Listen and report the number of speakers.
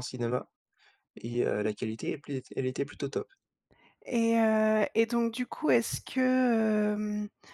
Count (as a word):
two